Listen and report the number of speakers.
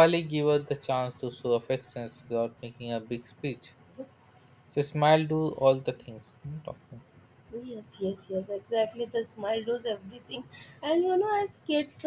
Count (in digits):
2